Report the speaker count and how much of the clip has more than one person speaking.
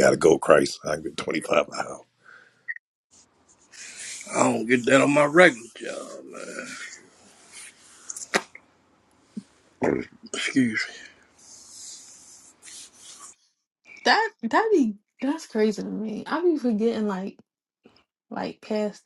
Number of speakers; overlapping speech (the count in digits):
3, no overlap